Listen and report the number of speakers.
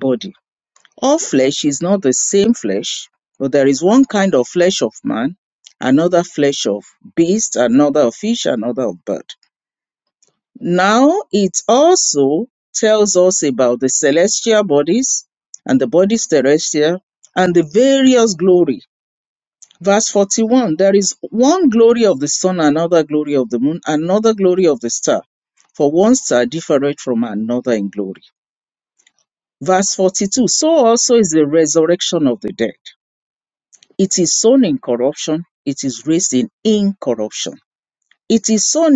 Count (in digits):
1